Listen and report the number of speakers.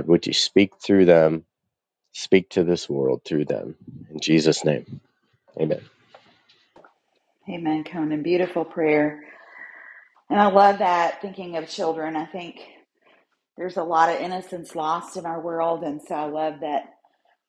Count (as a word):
two